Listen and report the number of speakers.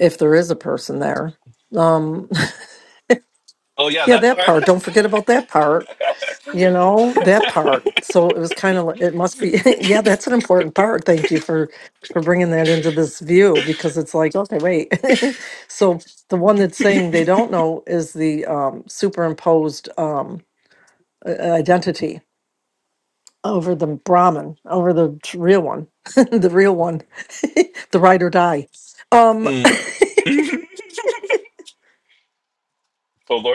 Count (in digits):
2